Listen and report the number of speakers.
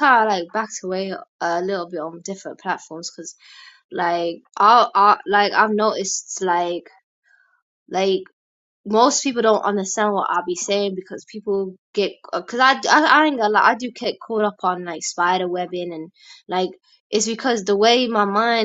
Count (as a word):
one